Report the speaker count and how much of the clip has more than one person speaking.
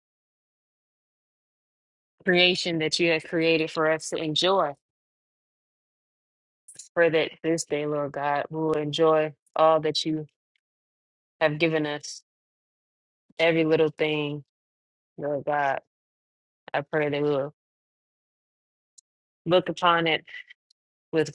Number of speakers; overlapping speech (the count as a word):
one, no overlap